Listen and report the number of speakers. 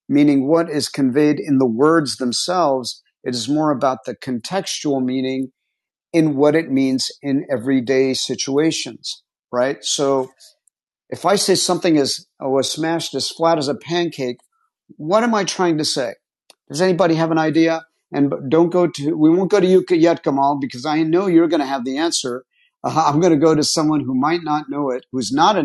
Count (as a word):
one